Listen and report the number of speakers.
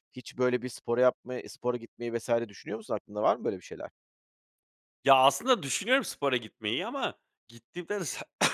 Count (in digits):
2